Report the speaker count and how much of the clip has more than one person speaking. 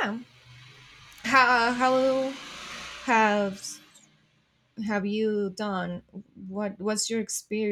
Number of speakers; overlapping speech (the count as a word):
one, no overlap